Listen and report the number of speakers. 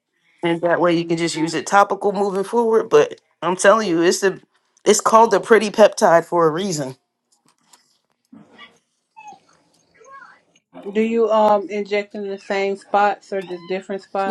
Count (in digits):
2